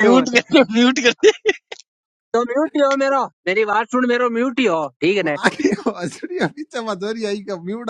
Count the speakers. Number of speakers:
3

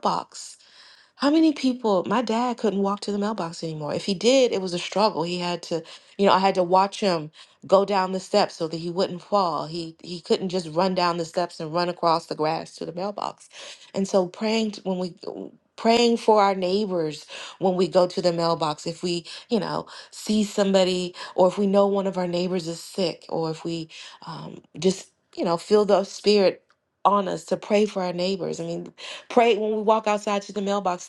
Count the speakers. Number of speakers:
1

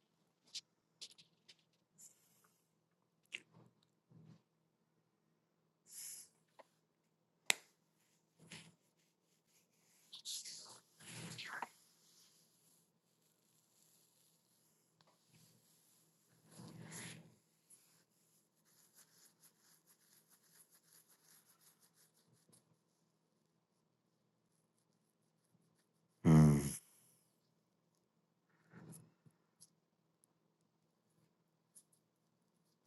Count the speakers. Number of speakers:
0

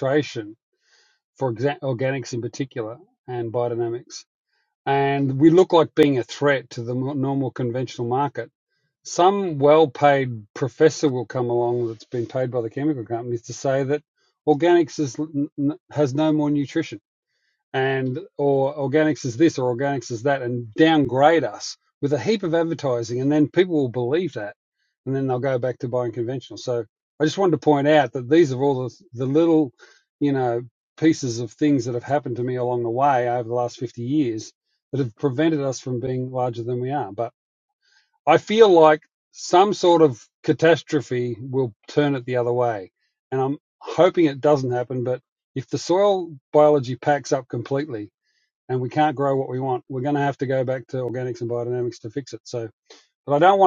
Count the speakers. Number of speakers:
1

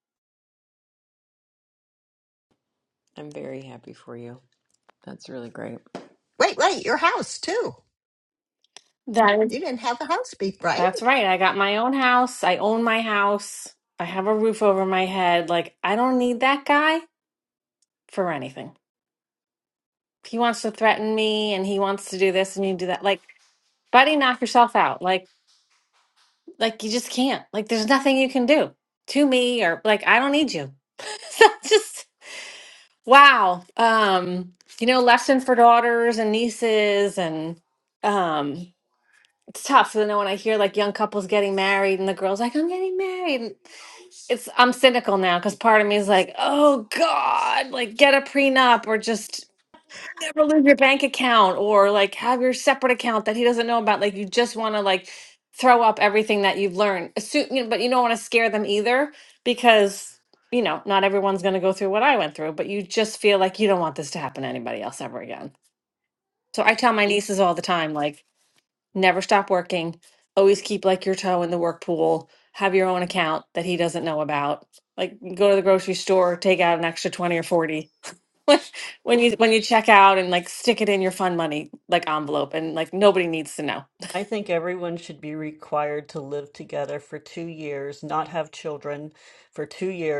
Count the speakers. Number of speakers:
4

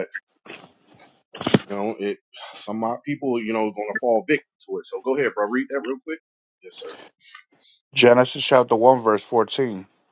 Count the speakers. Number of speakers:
2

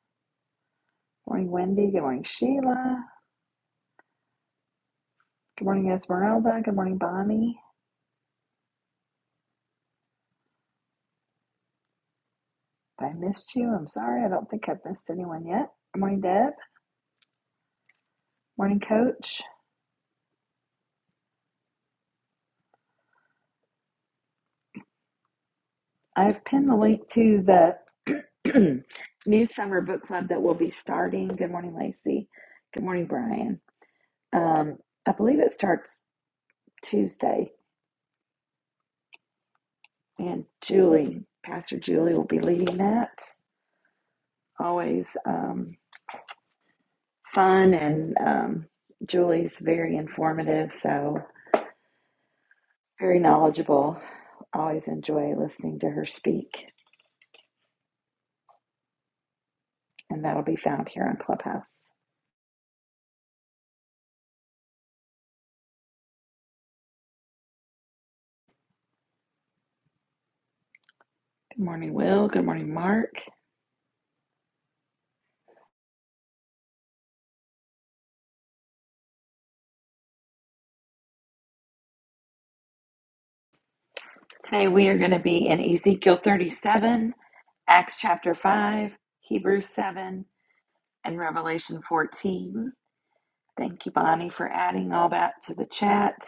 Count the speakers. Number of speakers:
1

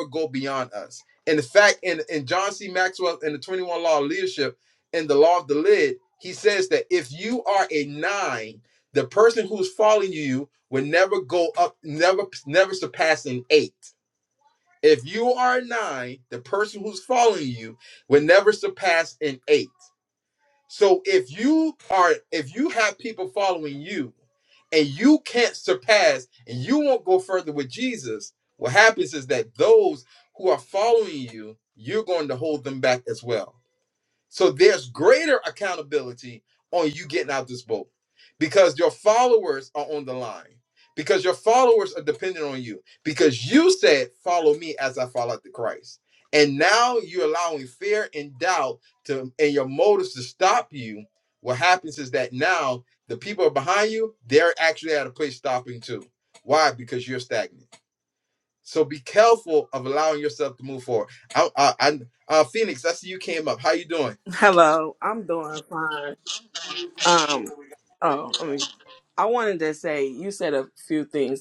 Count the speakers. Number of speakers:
2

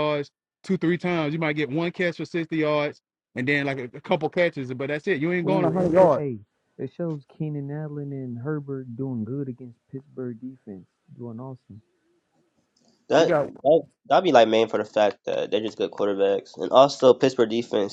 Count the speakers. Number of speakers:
3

